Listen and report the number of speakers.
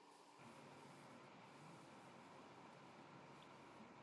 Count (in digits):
0